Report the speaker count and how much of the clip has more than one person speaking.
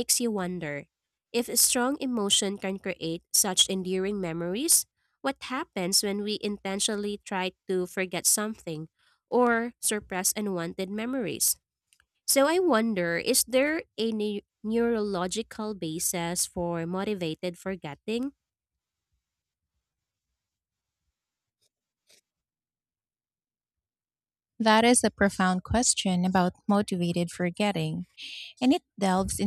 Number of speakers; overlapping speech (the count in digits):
2, no overlap